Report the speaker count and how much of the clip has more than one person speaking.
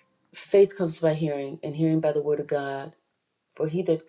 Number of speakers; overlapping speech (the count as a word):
one, no overlap